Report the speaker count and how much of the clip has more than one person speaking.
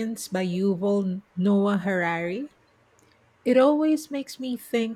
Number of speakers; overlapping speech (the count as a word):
one, no overlap